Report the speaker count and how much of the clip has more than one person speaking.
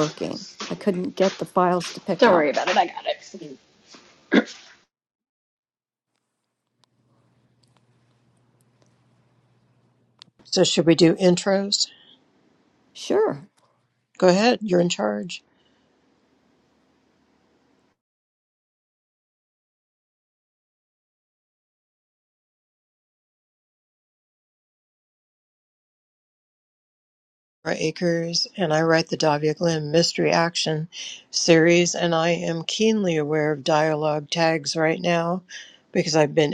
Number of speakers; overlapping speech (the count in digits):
3, about 1%